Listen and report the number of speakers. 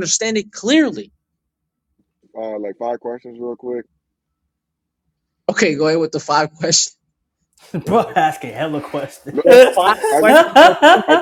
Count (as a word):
three